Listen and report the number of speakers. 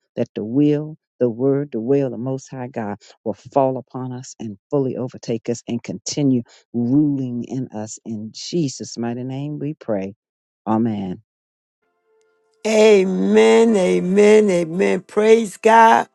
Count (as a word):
two